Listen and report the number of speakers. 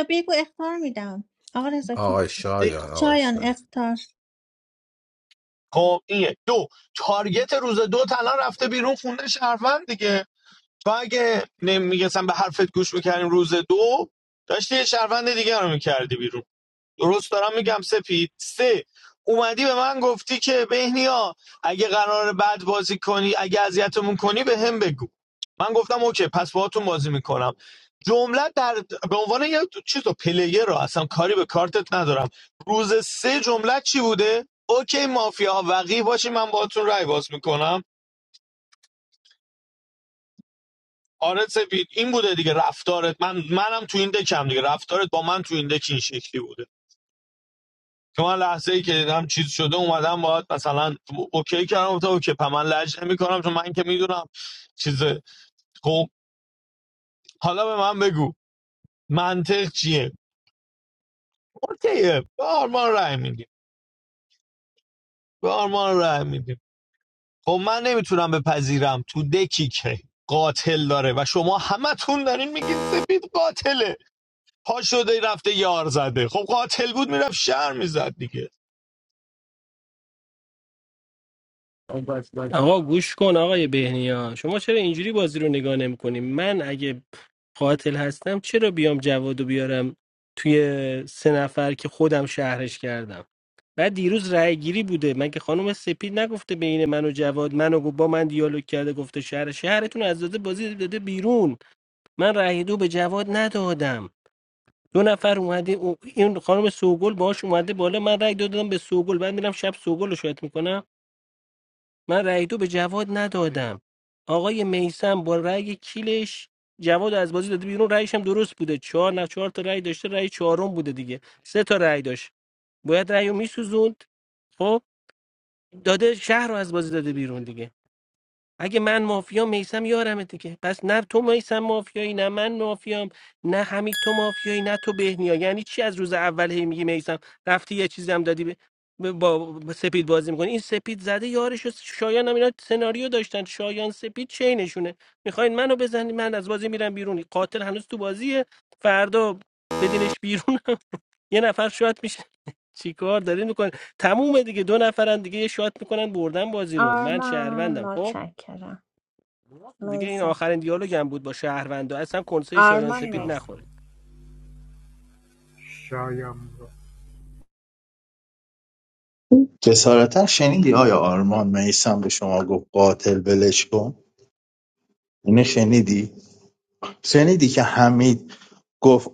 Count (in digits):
6